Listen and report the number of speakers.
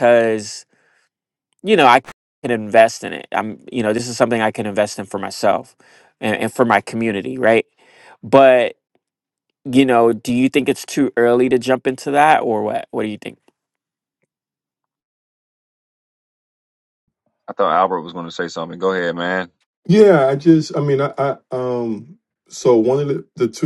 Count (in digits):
3